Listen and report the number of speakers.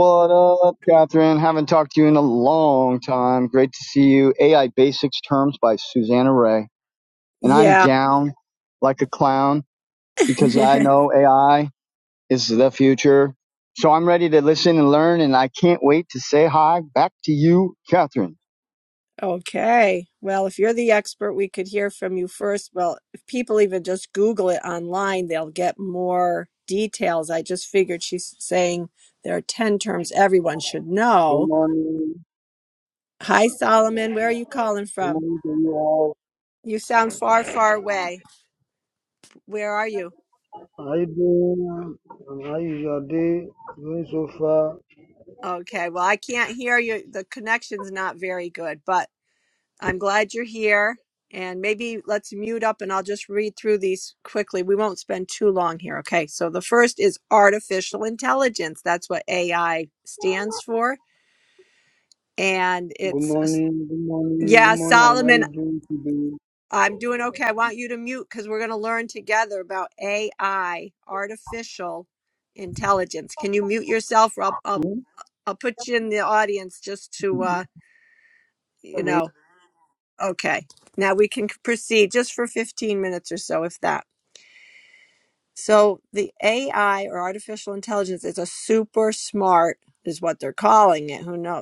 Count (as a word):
three